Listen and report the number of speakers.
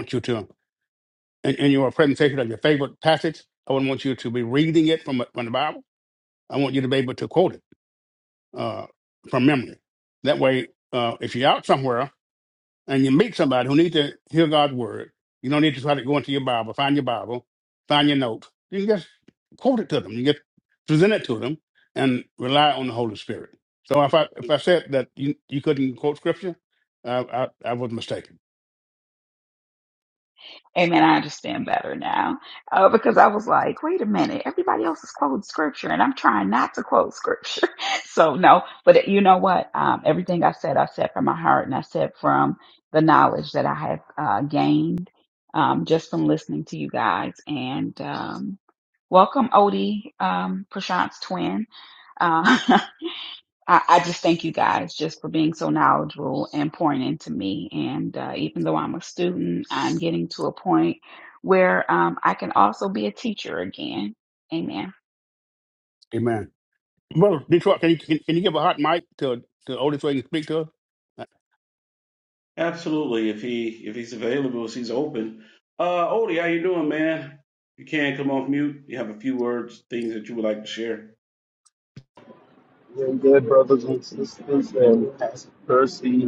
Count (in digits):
4